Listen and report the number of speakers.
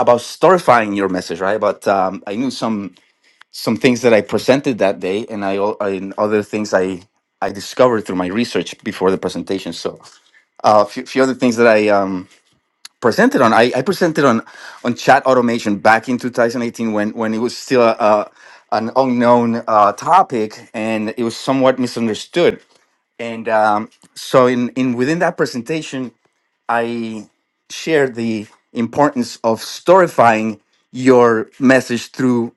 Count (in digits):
1